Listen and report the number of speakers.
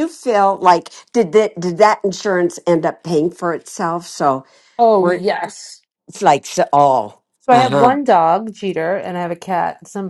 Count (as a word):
two